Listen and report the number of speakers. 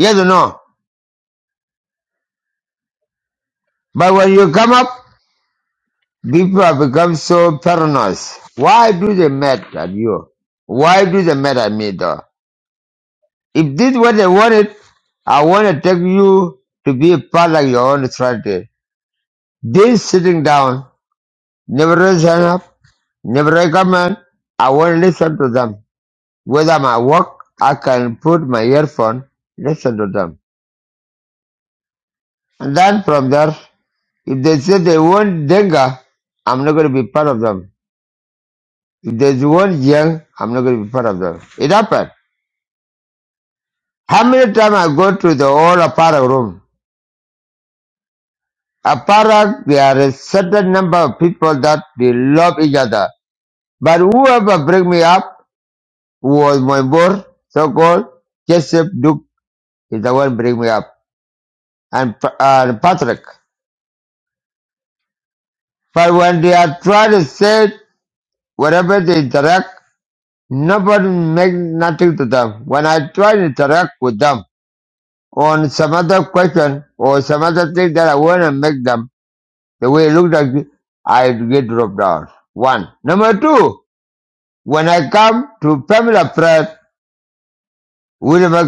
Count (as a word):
one